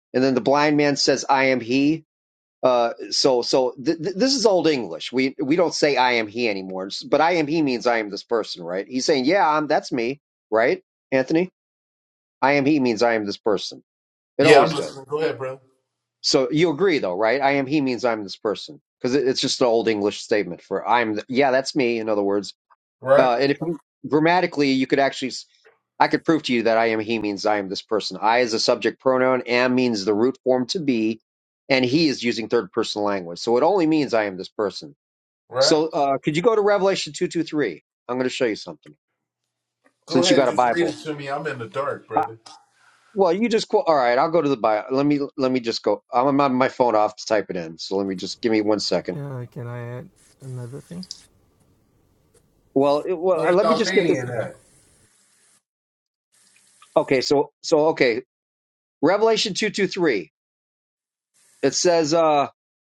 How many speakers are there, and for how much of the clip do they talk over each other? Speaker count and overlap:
3, about 5%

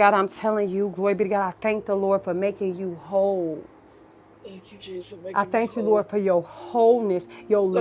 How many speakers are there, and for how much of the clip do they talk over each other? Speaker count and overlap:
2, about 10%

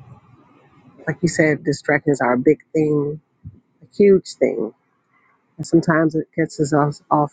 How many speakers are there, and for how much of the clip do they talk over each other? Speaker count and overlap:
1, no overlap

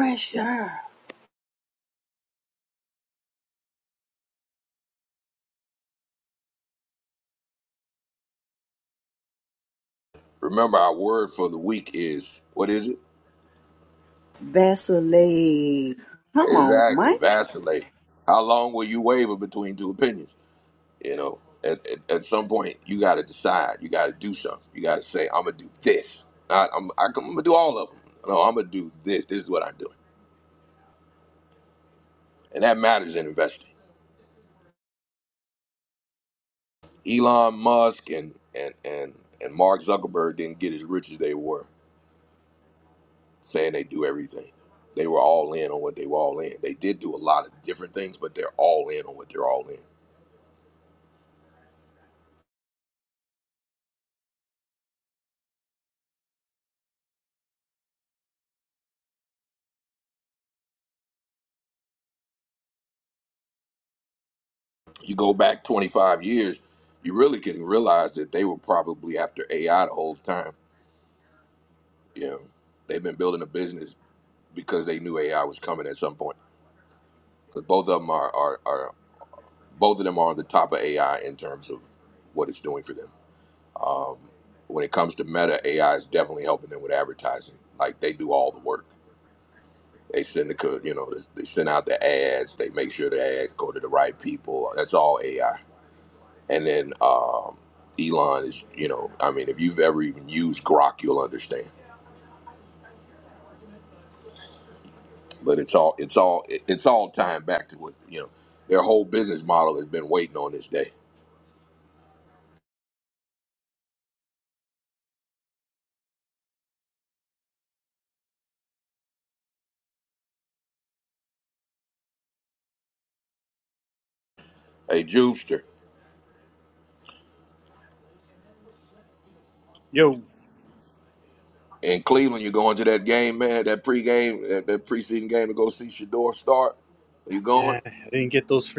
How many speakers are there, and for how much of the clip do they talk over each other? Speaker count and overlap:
3, about 1%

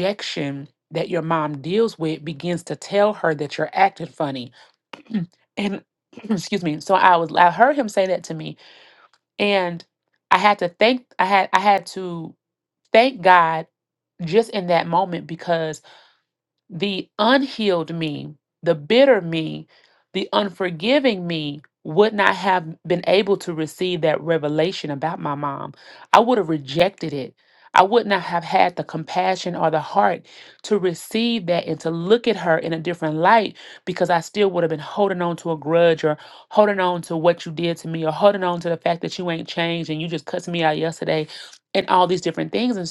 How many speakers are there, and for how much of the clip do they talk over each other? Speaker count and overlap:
1, no overlap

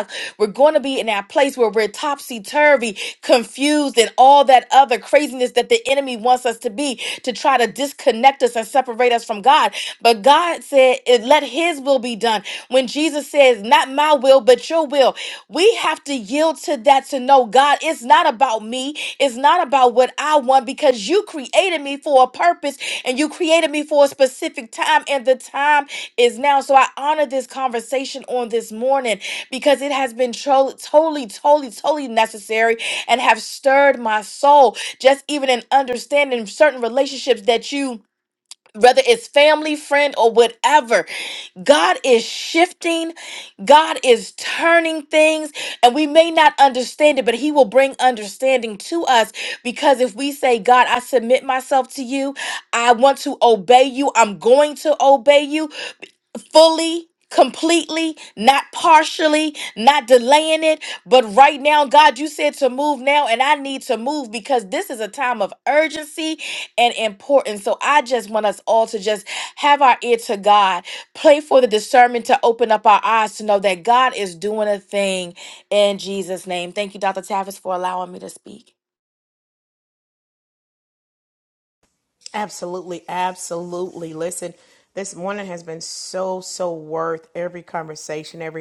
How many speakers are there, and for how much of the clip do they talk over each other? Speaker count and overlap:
2, no overlap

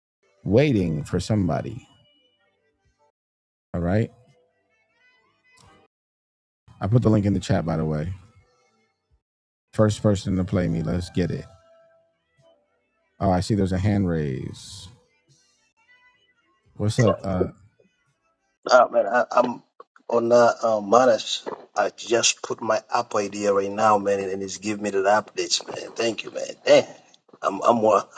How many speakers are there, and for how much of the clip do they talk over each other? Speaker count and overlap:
2, no overlap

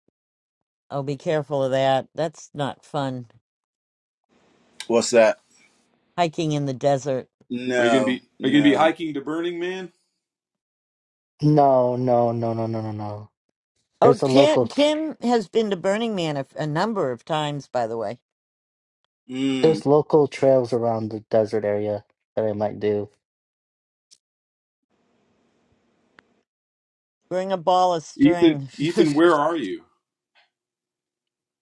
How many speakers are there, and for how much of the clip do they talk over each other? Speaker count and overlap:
4, about 8%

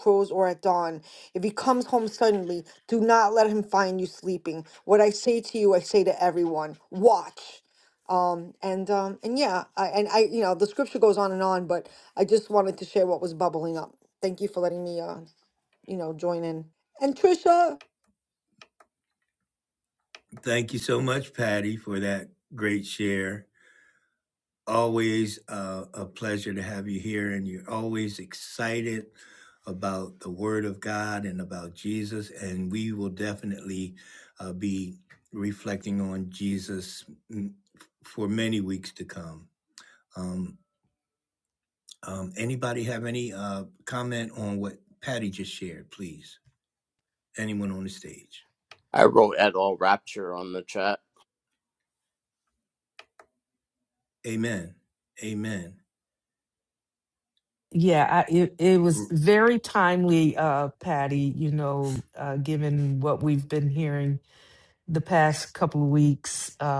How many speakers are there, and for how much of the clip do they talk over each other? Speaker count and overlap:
4, under 1%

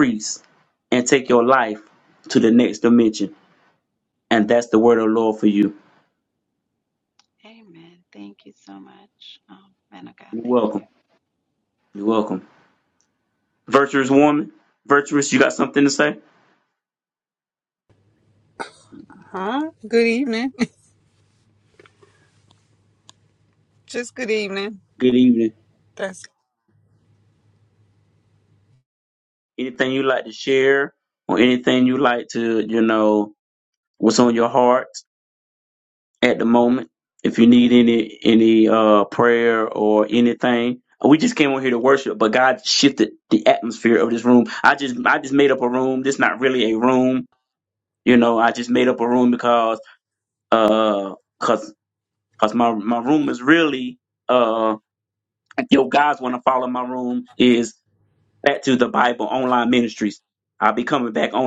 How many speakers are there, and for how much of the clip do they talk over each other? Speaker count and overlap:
3, about 1%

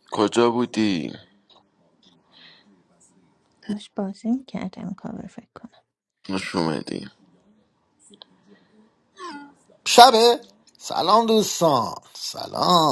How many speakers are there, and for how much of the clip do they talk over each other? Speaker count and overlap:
3, no overlap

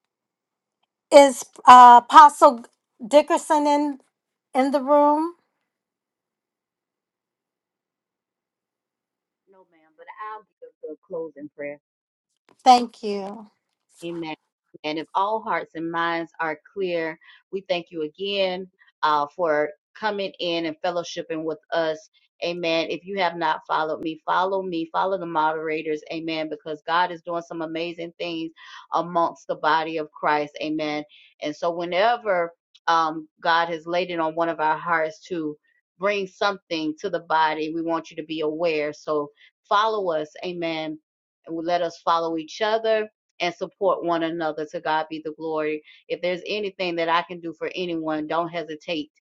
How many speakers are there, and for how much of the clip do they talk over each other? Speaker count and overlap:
2, no overlap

